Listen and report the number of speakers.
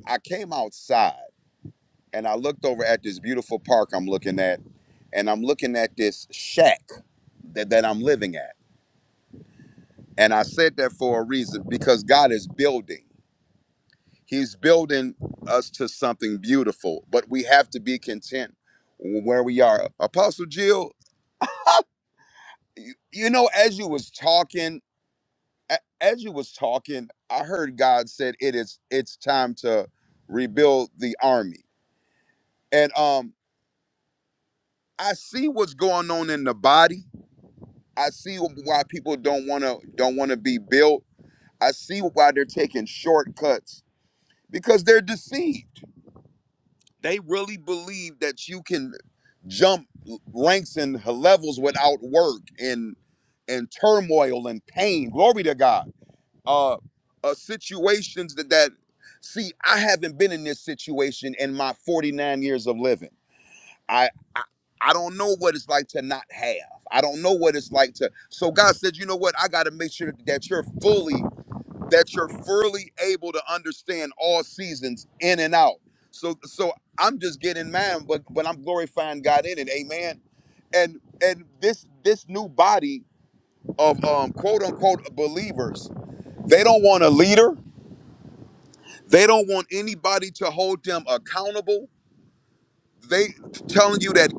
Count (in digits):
1